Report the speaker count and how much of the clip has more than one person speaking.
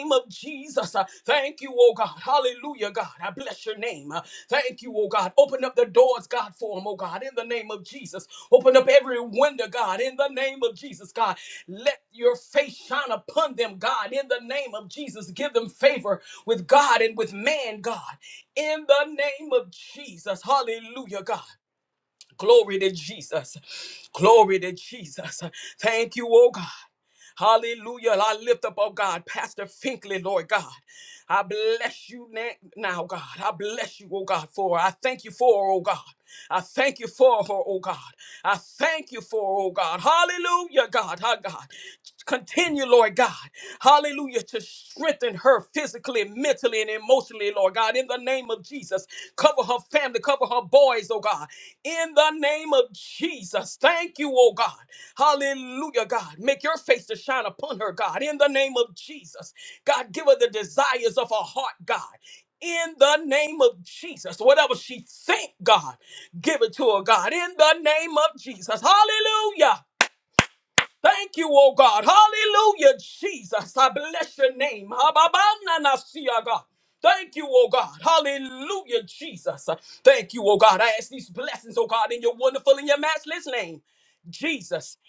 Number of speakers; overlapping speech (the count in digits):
1, no overlap